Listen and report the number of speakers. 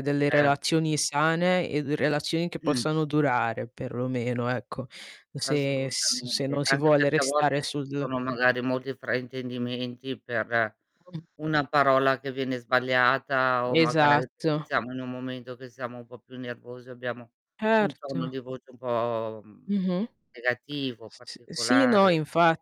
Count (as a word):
two